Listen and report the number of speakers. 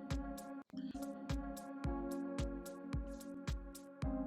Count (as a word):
zero